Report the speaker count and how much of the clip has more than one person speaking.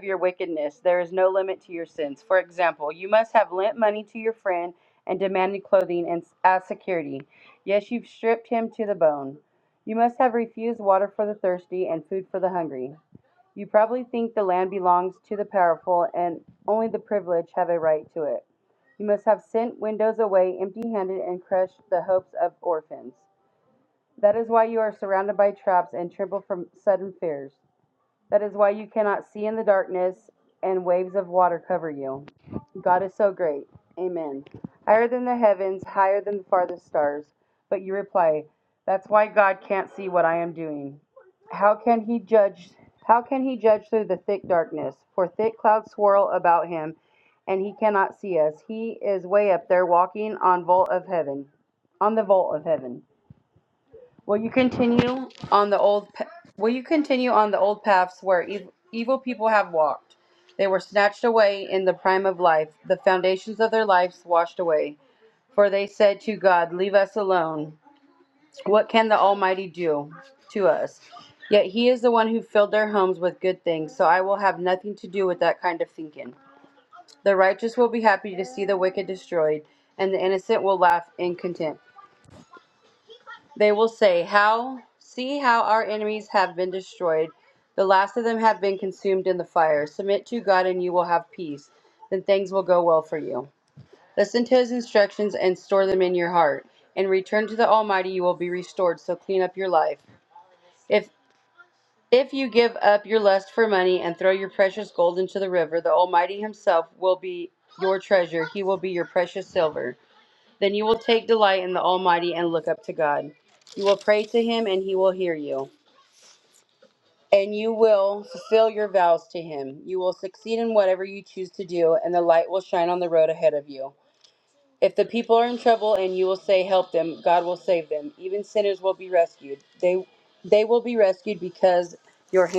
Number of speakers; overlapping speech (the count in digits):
1, no overlap